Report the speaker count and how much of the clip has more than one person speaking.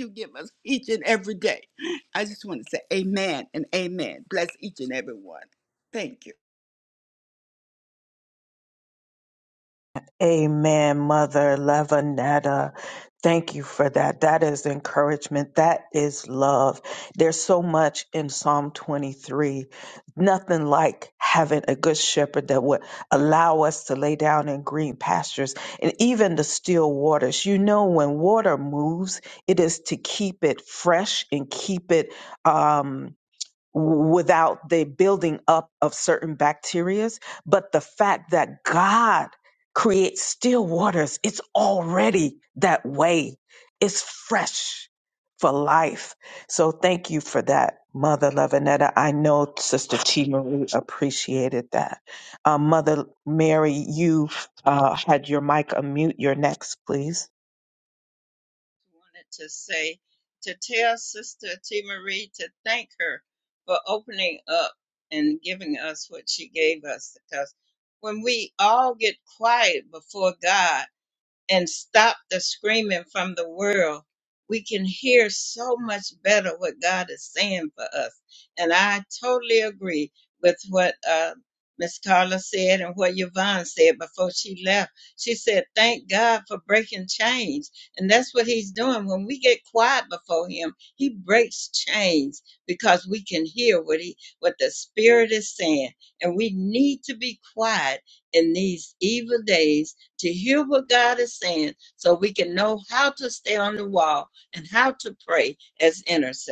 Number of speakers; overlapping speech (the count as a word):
three, no overlap